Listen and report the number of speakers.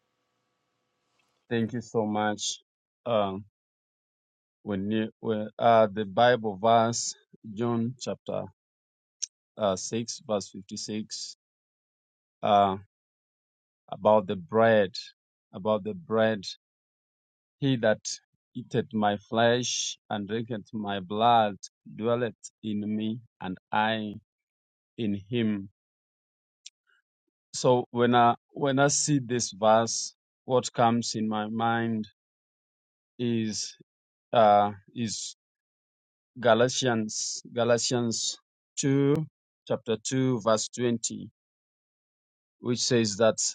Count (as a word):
one